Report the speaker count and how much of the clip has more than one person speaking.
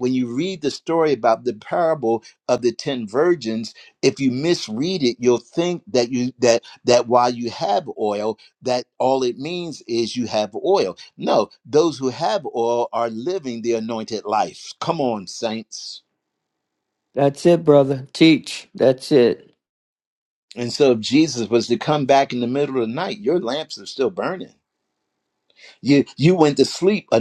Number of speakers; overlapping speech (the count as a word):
two, no overlap